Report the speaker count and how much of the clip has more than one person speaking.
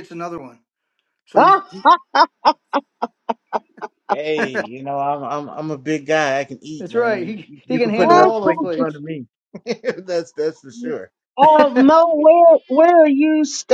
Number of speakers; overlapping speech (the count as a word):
three, about 19%